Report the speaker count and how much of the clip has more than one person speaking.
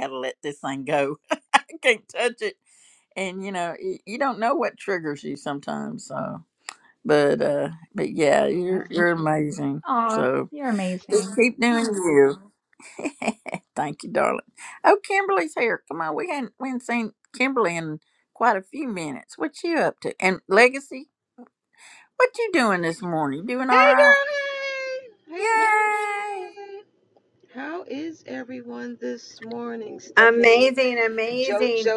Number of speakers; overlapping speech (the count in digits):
4, about 11%